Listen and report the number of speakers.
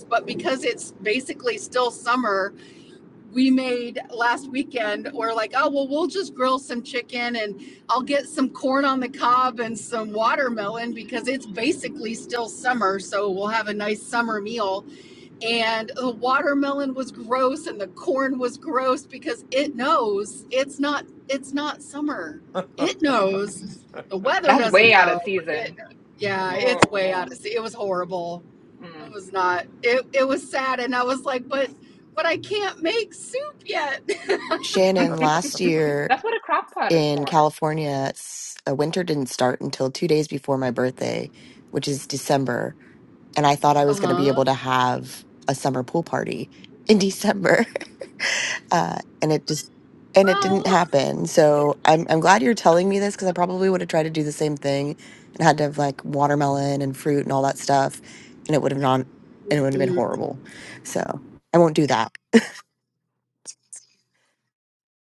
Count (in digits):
3